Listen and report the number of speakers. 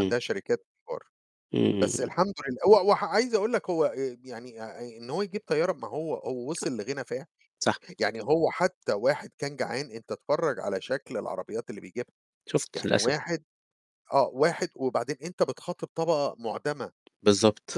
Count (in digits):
2